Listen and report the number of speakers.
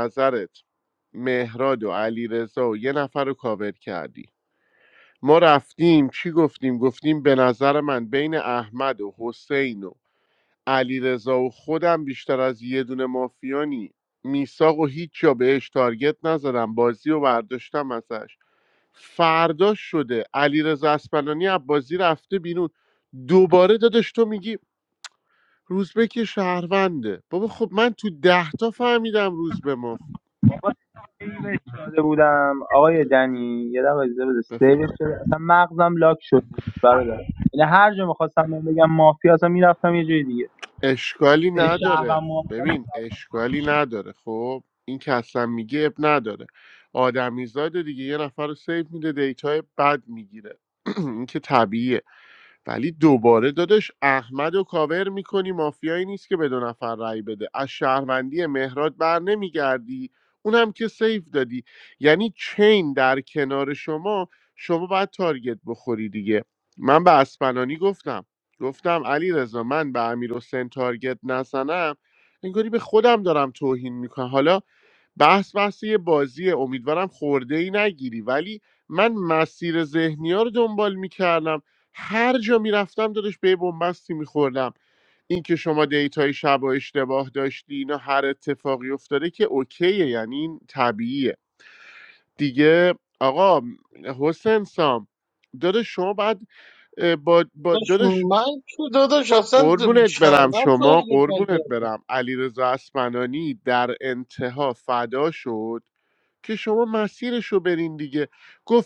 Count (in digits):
3